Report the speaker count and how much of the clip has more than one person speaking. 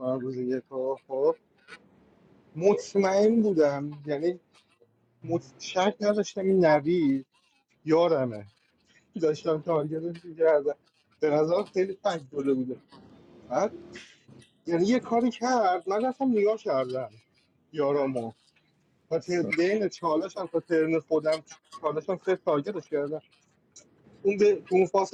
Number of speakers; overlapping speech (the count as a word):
one, no overlap